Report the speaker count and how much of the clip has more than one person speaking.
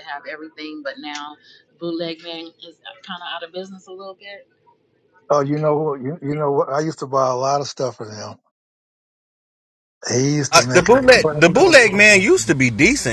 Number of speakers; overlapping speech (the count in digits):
3, about 4%